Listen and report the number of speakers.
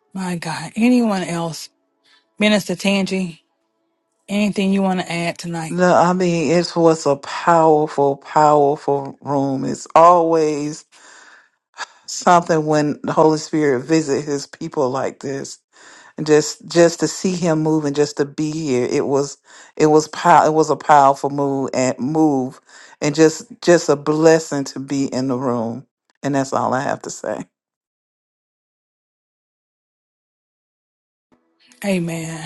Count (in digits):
2